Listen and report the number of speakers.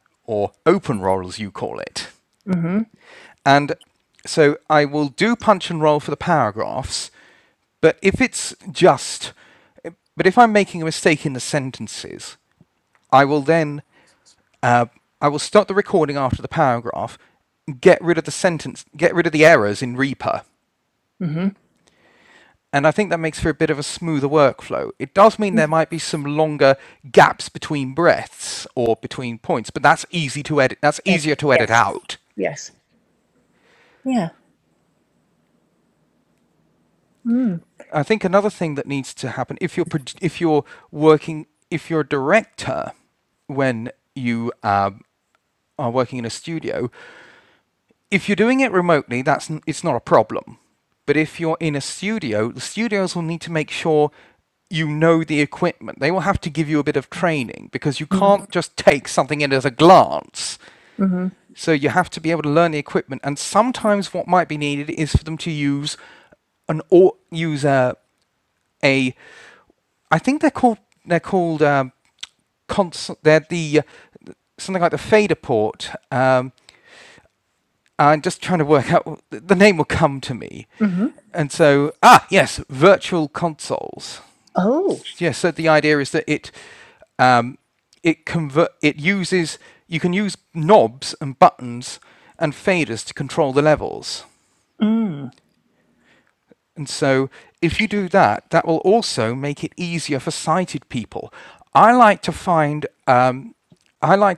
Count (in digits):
2